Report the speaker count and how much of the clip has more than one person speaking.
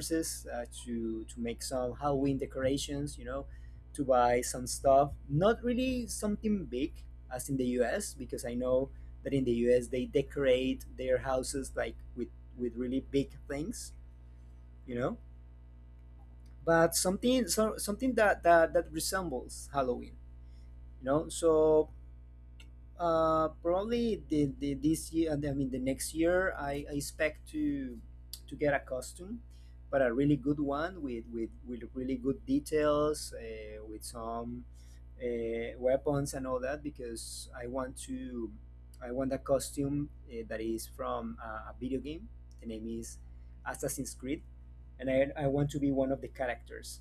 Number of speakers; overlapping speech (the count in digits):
1, no overlap